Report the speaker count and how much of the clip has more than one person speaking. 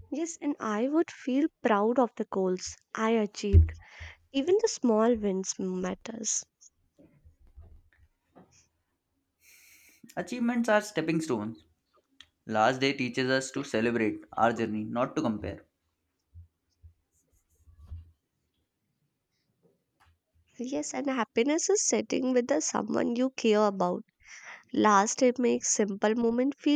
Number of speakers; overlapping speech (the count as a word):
two, no overlap